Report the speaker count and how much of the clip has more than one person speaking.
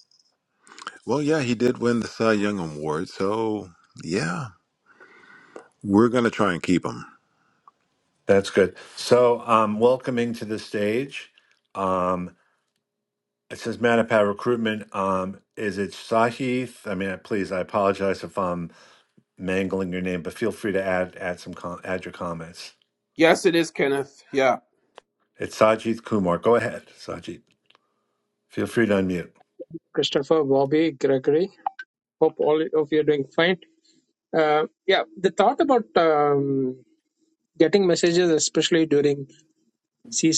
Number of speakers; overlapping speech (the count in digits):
4, no overlap